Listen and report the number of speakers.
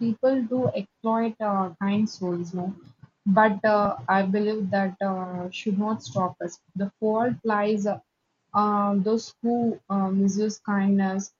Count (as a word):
one